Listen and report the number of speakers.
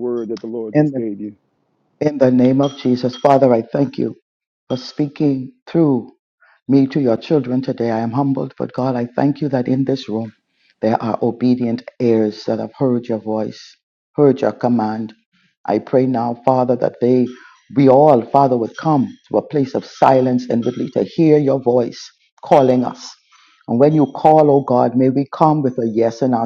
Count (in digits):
2